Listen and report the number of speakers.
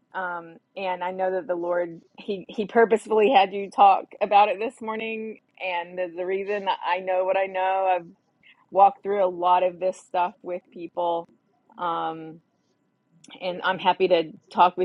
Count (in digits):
1